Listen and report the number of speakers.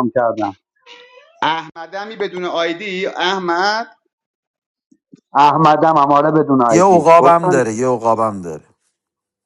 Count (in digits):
3